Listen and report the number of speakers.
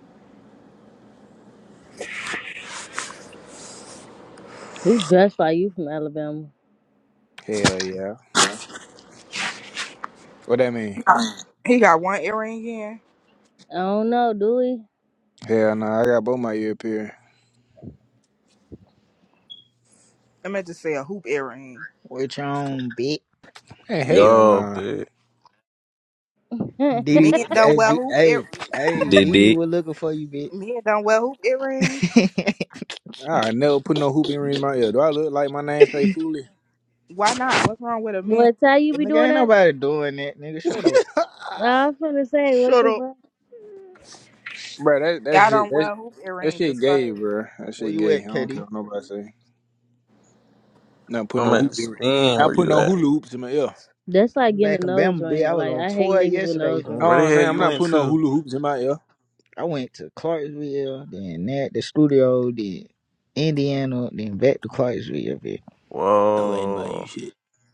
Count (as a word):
five